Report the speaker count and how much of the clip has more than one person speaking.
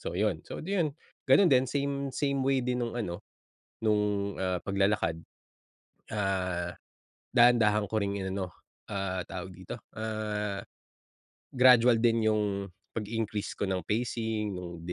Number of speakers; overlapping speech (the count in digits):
1, no overlap